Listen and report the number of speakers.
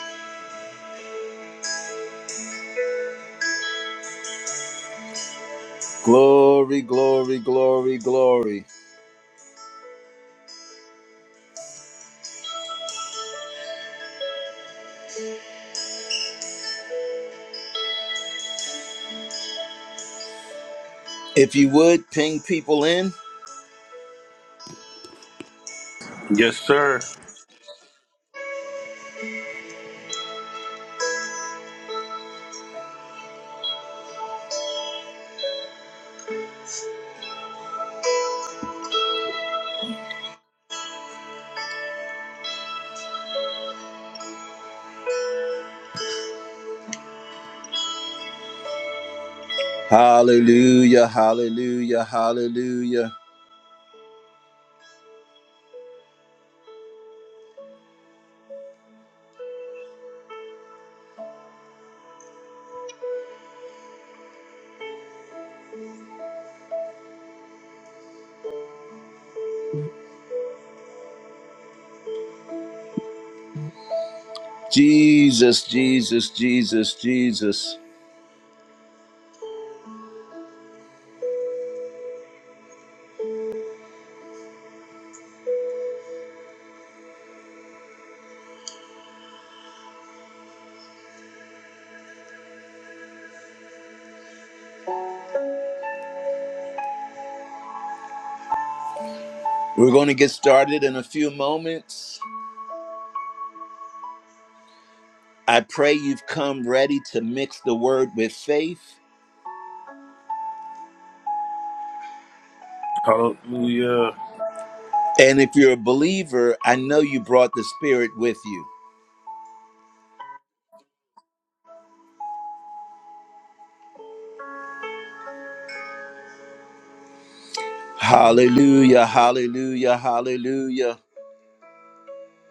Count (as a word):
two